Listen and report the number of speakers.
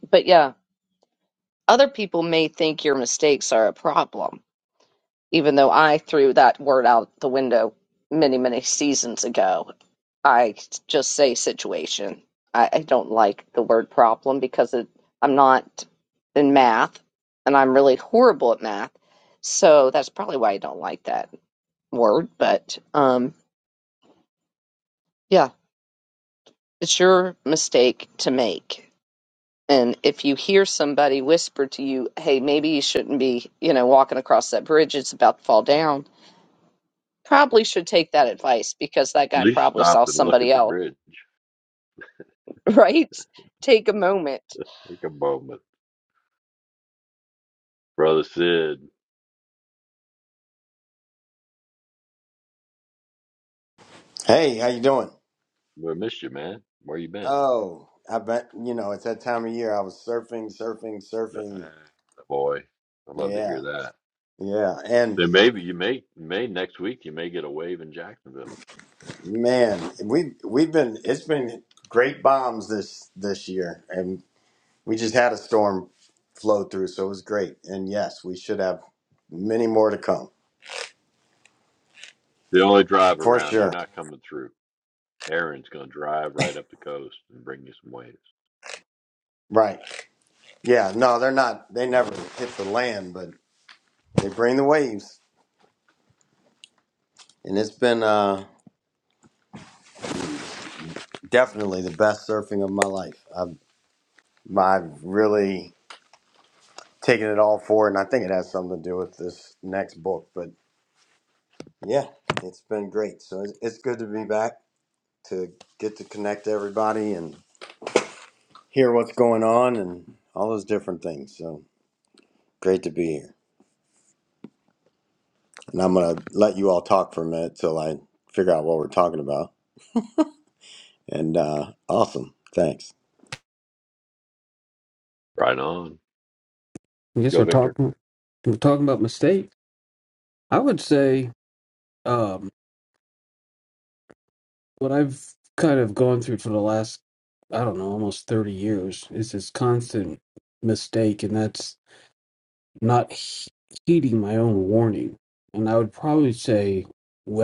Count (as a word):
four